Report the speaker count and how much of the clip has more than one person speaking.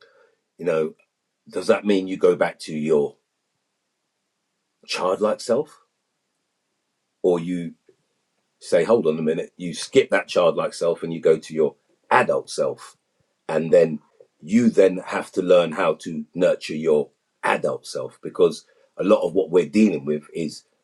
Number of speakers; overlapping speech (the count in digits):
1, no overlap